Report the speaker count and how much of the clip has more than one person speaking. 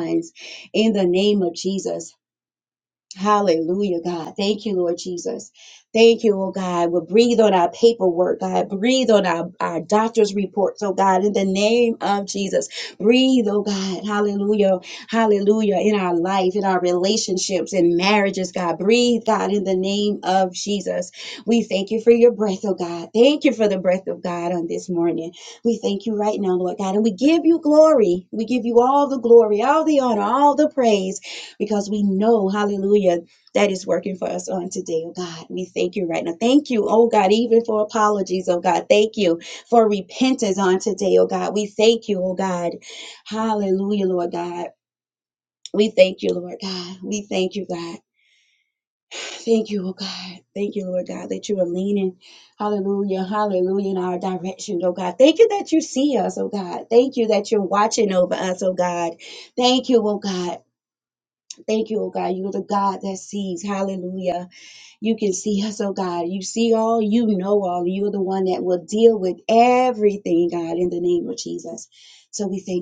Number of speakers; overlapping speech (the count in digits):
1, no overlap